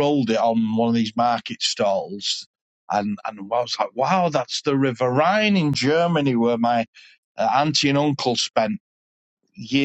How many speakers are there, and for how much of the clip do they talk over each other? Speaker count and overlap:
one, no overlap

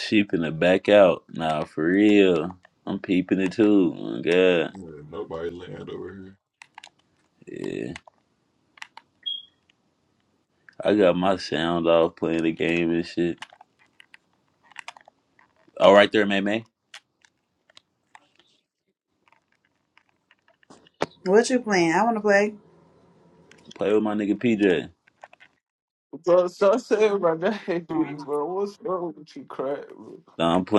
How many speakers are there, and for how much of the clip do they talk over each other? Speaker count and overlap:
four, about 1%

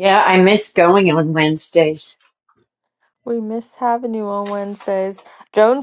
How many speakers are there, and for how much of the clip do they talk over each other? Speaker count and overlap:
two, no overlap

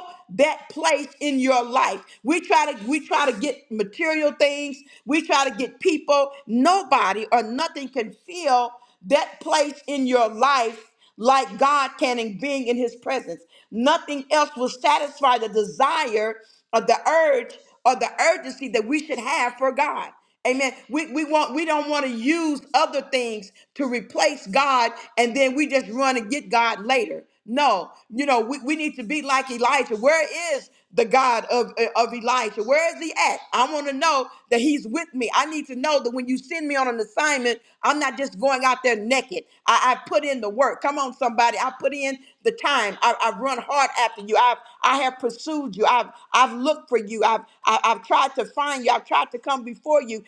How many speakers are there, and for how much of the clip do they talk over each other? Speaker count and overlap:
one, no overlap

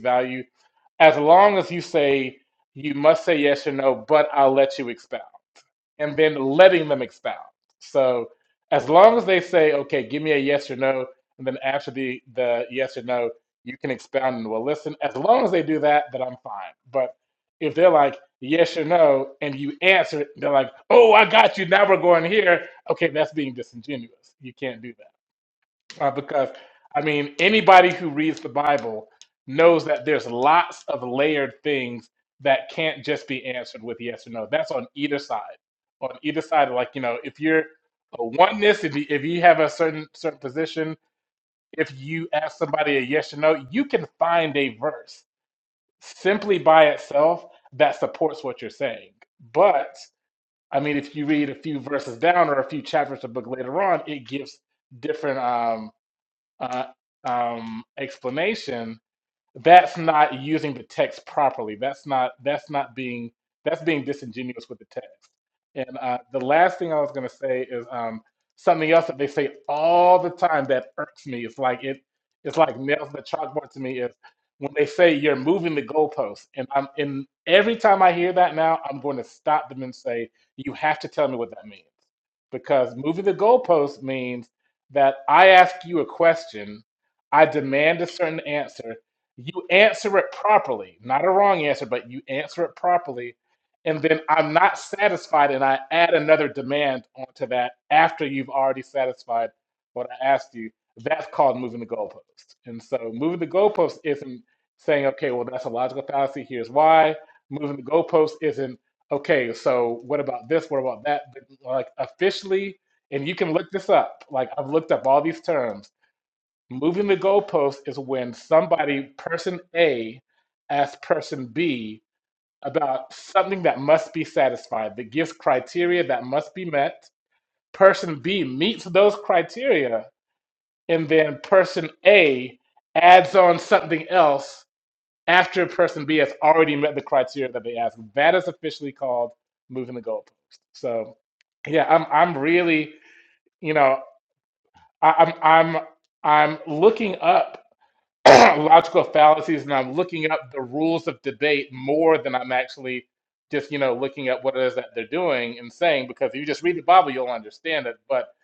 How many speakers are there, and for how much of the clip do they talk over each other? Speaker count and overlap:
one, no overlap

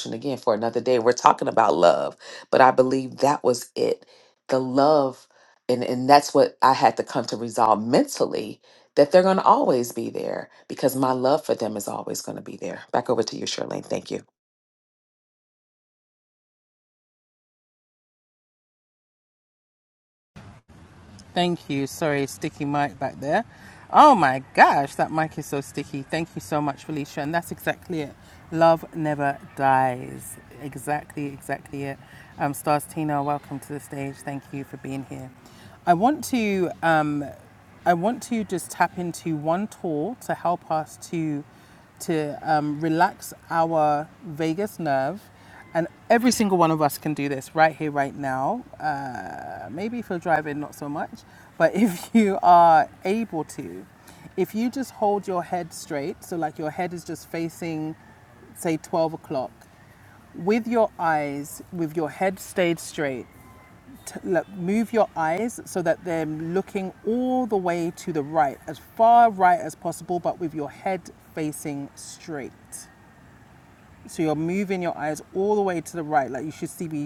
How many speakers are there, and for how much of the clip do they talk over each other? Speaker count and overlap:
two, no overlap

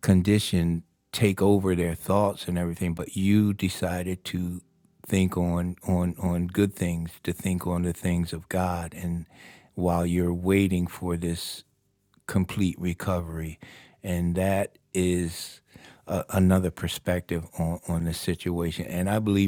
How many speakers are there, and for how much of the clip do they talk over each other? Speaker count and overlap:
one, no overlap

